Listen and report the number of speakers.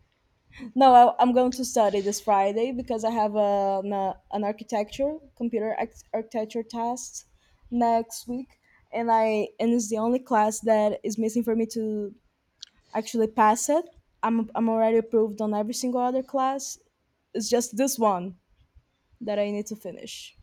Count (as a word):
one